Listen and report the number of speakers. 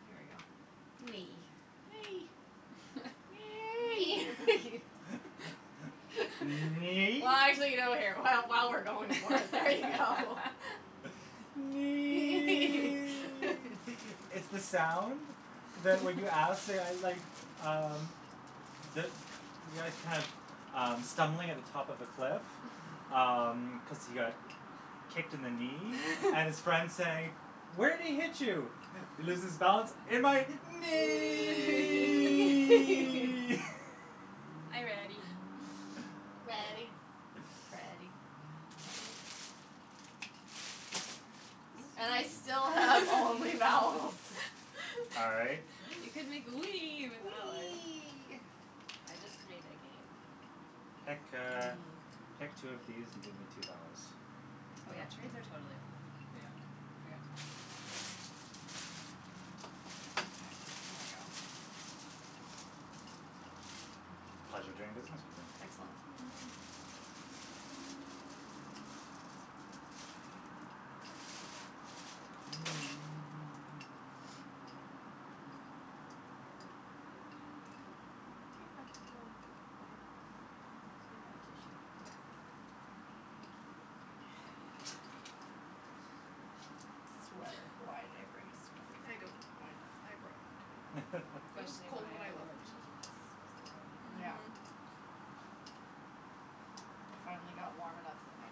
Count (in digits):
4